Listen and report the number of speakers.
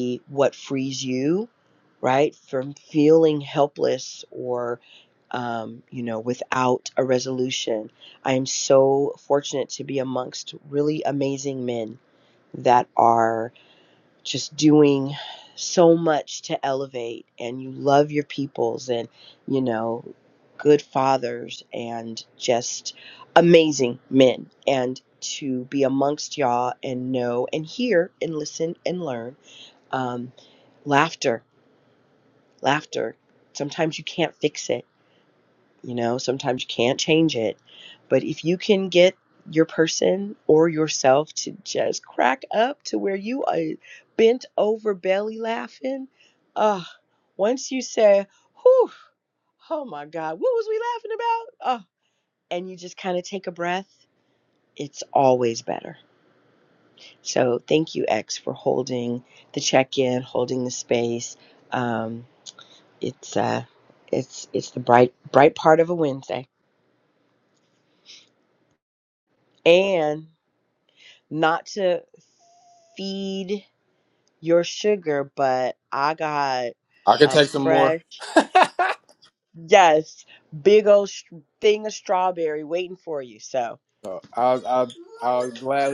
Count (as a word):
two